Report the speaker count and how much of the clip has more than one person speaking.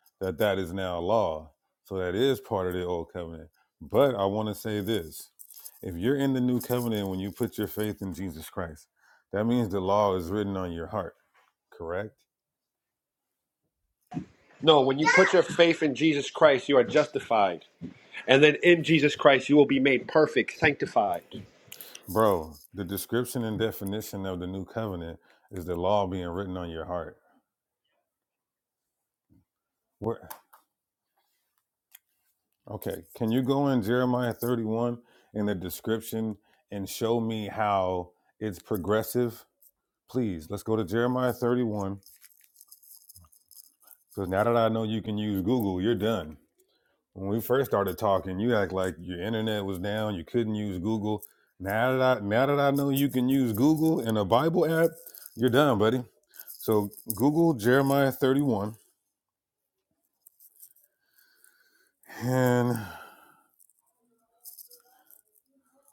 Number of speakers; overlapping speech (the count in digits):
2, no overlap